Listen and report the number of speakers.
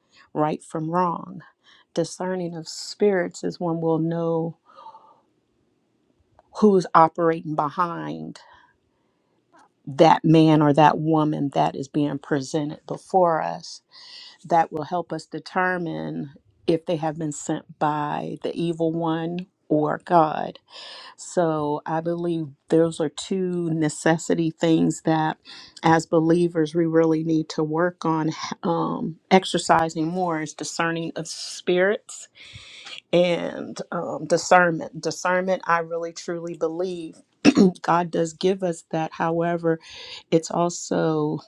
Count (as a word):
one